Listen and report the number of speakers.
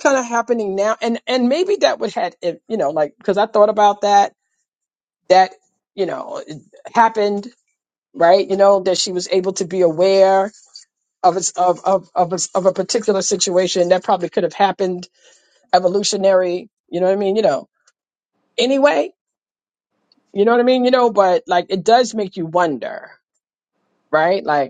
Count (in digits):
1